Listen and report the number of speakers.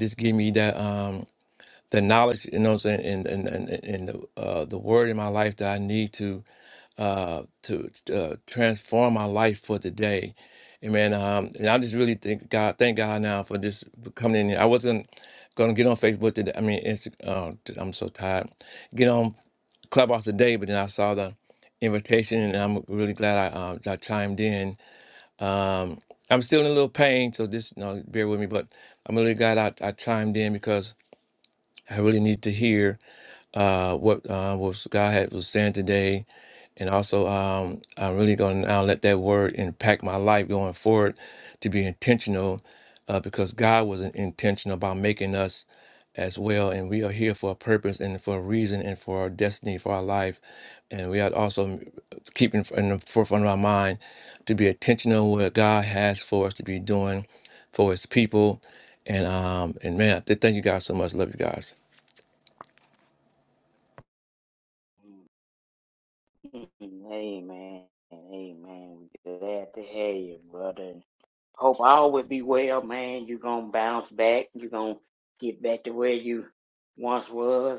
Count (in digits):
2